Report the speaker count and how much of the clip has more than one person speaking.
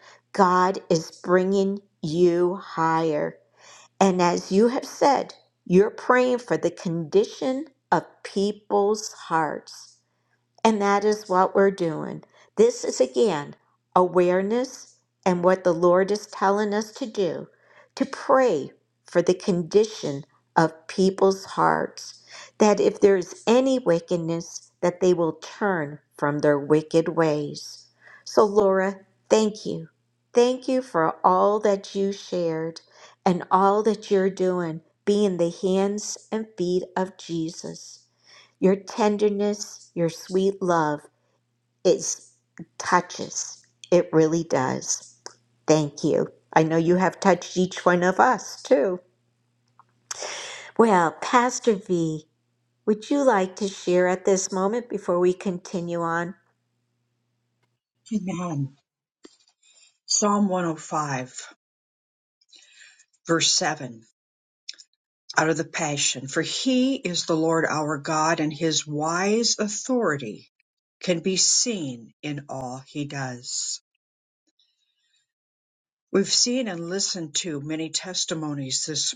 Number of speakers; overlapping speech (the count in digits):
2, no overlap